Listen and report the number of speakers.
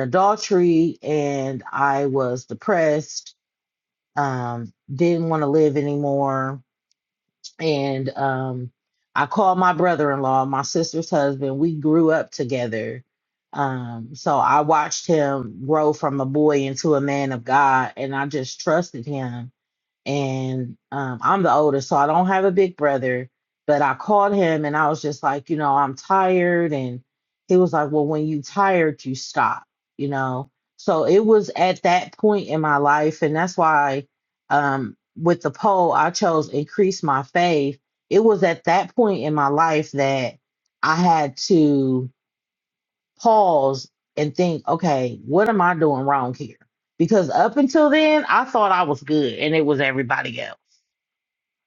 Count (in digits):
1